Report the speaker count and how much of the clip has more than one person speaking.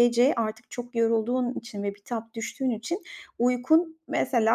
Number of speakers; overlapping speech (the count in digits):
1, no overlap